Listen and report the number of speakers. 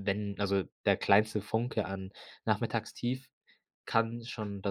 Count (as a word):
one